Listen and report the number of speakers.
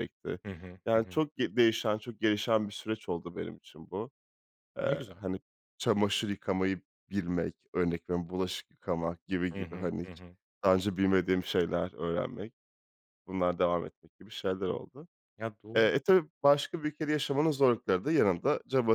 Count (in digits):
2